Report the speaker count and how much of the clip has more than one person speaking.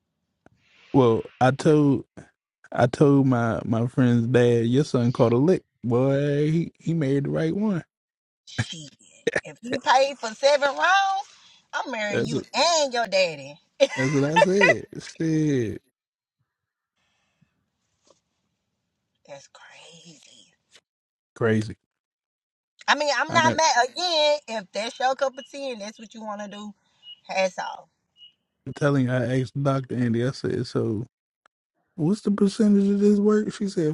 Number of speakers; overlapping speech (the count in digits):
2, about 2%